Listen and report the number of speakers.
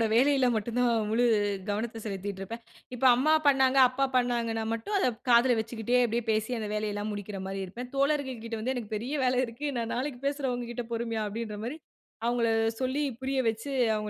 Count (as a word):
one